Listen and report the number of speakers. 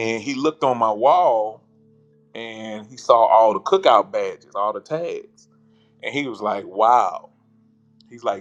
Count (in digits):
1